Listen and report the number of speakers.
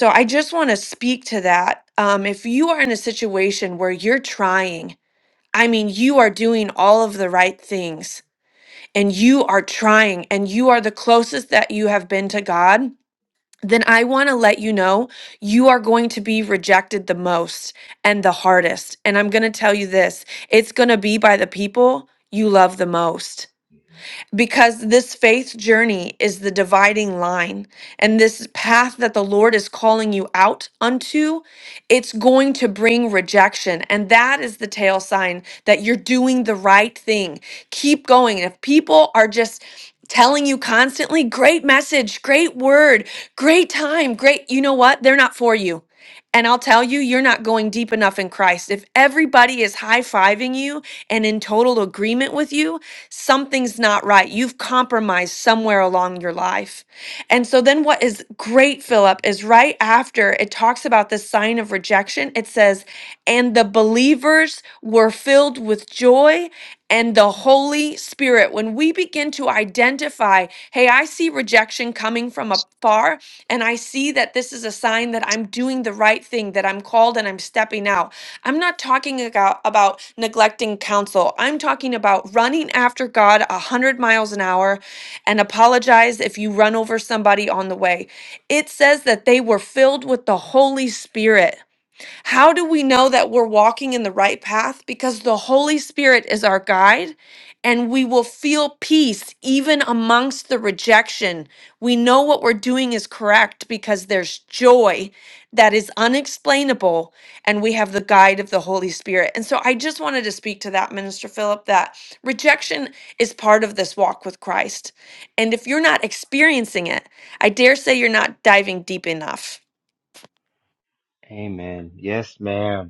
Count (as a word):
two